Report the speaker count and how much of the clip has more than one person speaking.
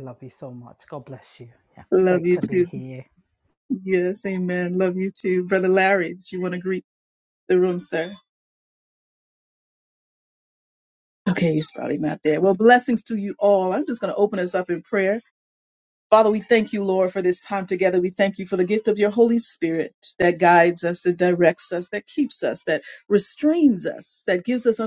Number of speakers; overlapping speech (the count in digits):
2, about 3%